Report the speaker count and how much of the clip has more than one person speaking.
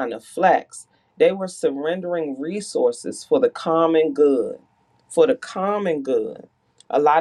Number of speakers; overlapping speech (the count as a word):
one, no overlap